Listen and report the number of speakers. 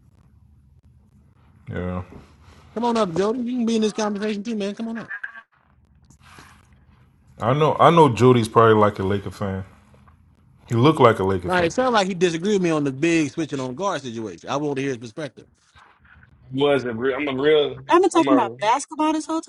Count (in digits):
4